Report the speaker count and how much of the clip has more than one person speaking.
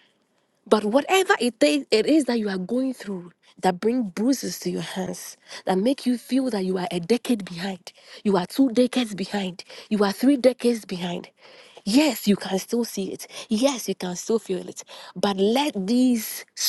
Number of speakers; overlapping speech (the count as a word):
one, no overlap